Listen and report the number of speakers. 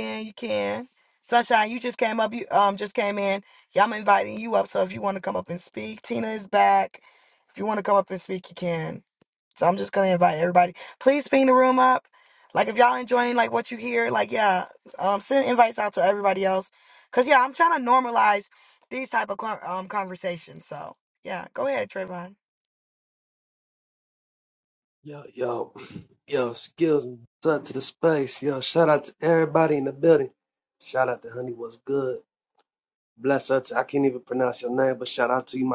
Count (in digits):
2